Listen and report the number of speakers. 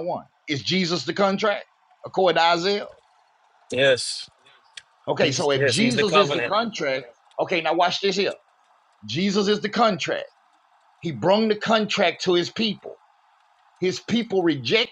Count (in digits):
2